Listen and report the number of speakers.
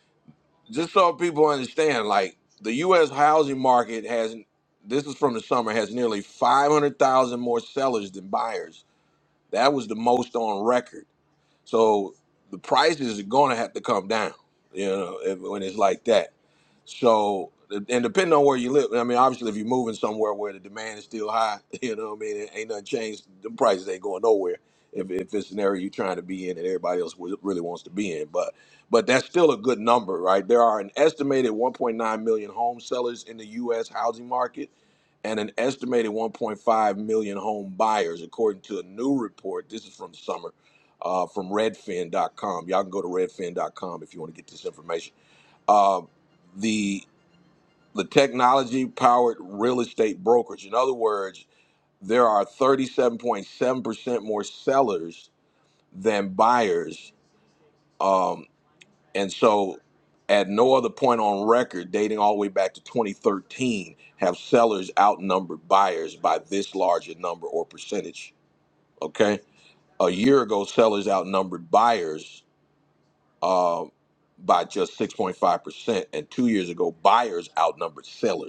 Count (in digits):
1